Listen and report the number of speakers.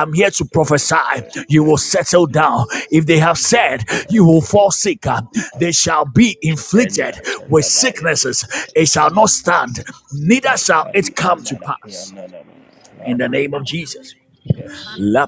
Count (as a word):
two